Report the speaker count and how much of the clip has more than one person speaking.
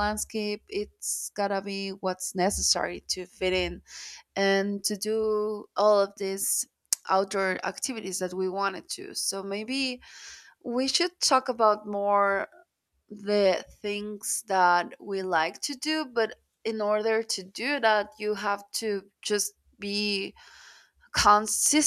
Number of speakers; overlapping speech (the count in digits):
1, no overlap